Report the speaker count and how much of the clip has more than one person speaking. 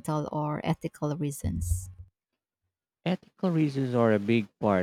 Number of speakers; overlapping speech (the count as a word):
two, no overlap